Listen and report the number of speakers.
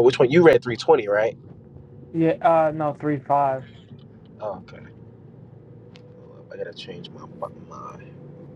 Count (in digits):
2